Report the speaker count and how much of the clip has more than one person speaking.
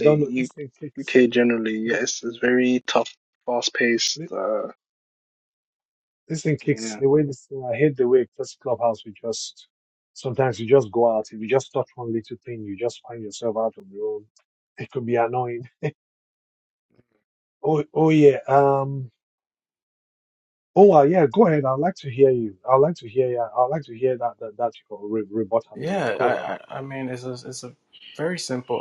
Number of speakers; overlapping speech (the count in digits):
3, about 5%